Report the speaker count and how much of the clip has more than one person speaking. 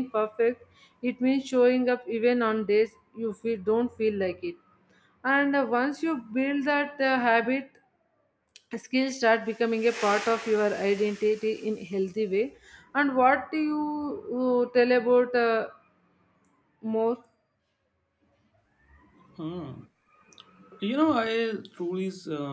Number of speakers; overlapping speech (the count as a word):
two, no overlap